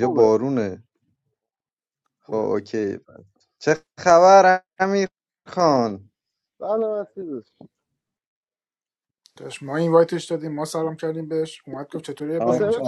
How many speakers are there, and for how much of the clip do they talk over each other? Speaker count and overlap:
3, about 7%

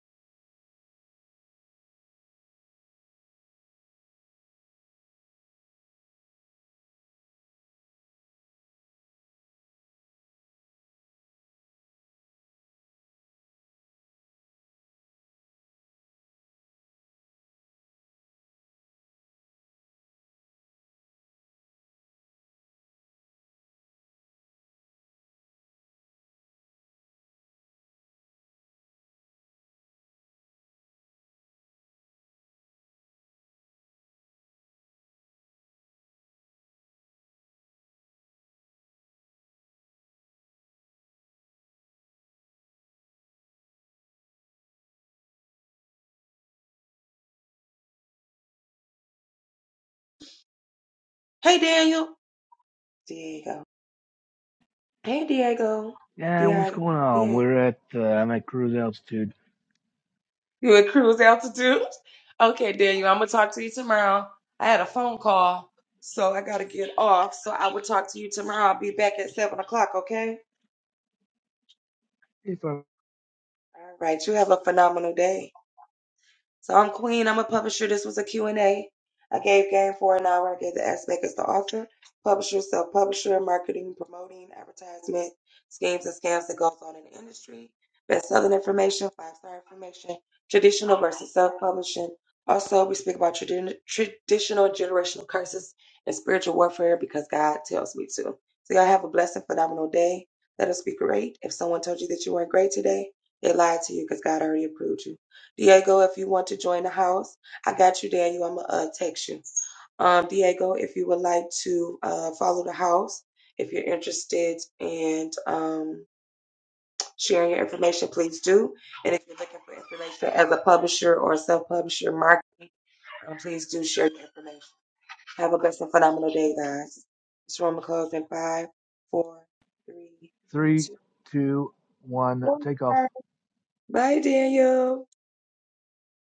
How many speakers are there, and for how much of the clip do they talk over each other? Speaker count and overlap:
2, about 1%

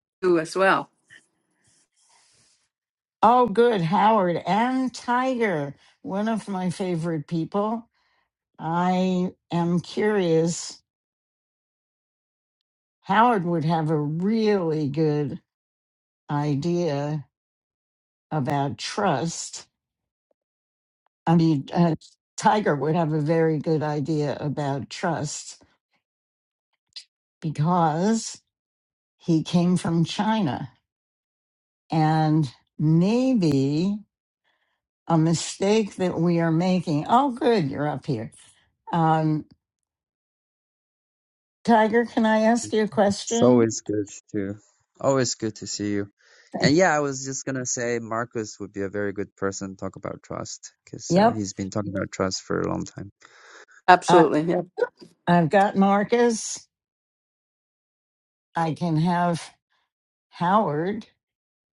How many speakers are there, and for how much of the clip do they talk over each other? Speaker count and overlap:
3, about 1%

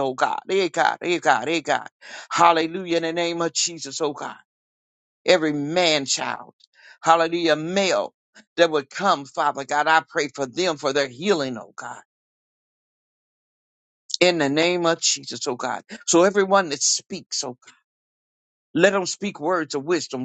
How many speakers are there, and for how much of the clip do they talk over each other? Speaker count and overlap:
1, no overlap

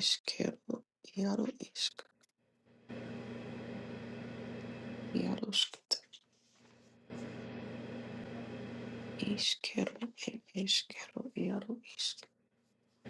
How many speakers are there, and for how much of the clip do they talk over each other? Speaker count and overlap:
1, no overlap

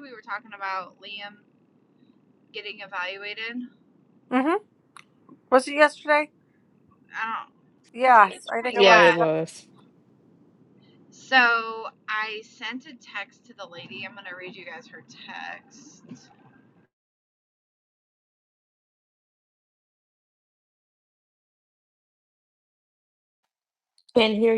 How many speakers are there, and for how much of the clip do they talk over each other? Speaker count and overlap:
3, about 5%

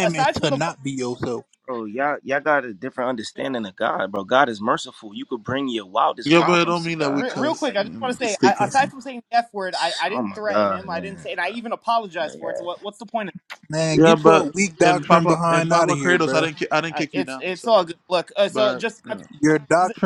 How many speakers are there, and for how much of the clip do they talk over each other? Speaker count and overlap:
4, about 47%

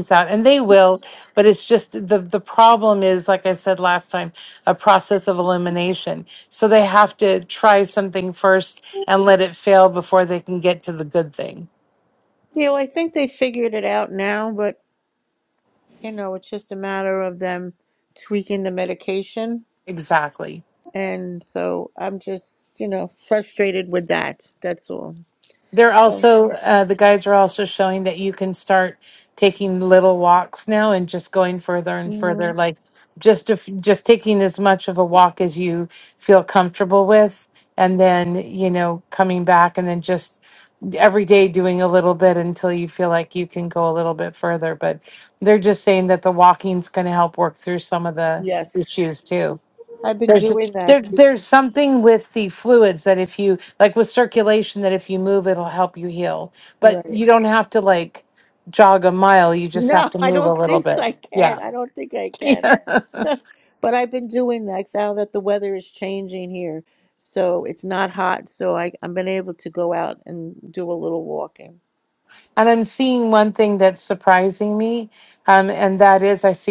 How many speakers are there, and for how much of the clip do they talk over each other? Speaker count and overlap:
2, about 4%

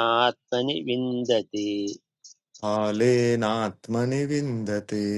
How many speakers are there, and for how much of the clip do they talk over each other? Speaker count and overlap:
2, no overlap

